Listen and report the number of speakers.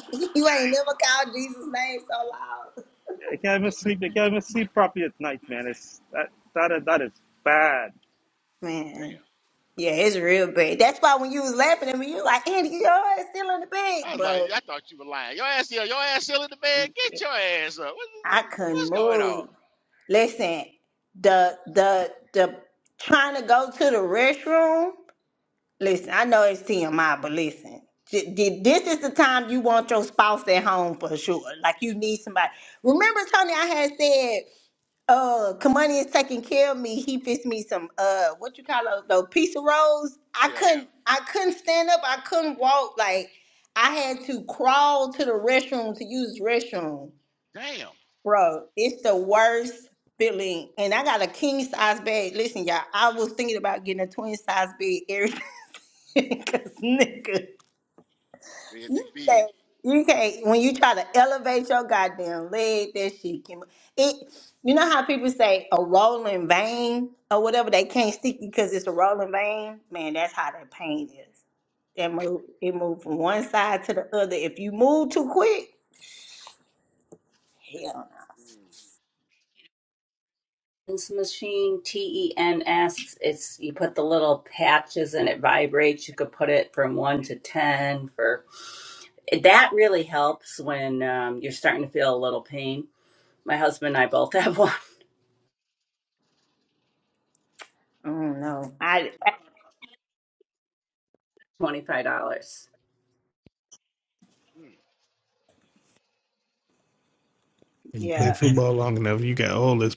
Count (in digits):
5